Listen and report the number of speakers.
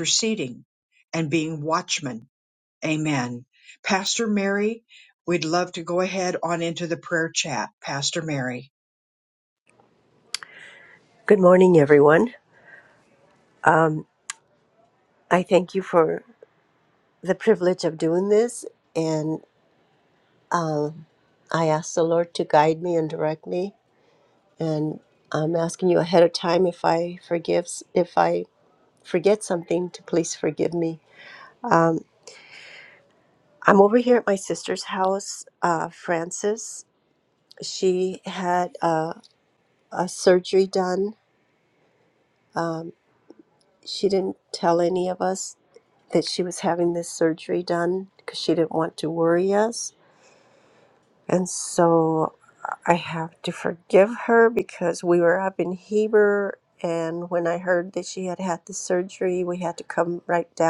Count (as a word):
two